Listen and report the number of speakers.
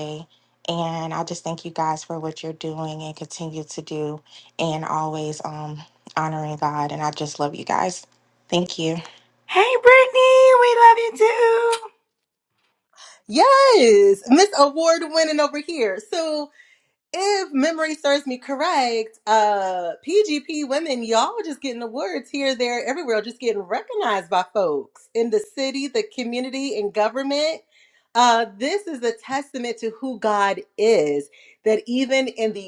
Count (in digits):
3